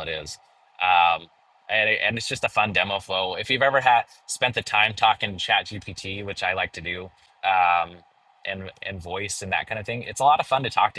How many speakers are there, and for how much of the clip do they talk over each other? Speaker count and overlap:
one, no overlap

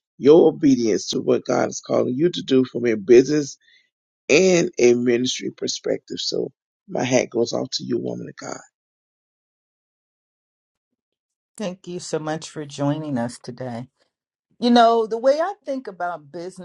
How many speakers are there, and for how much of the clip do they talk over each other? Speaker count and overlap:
two, no overlap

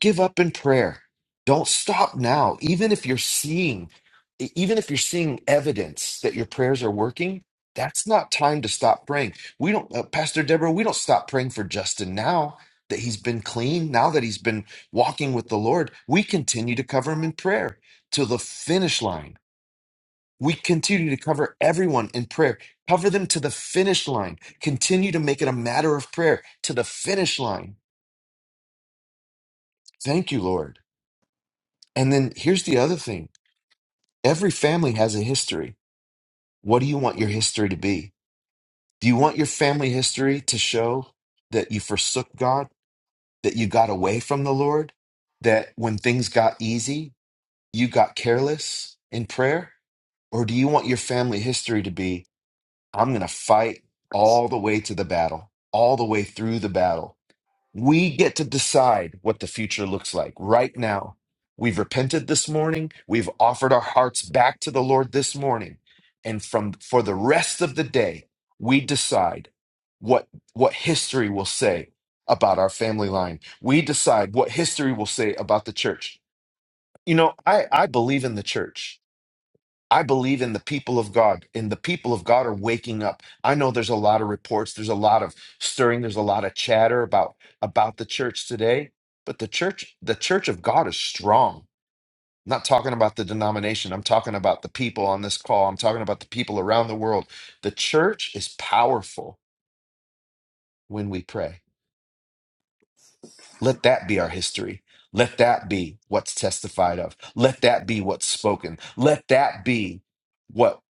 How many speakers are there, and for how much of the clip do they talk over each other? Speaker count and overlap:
one, no overlap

